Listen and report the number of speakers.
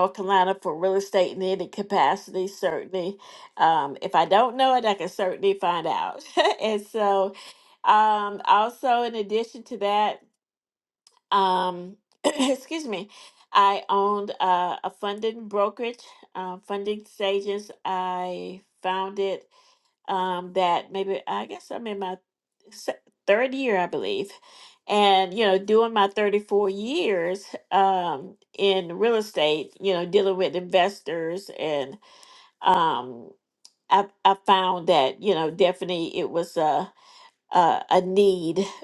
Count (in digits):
1